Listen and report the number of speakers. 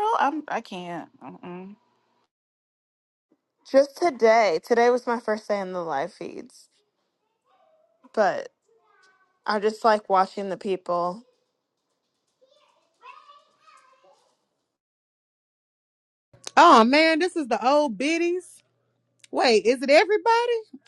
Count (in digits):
3